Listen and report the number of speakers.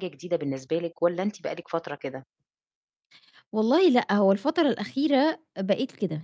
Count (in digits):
2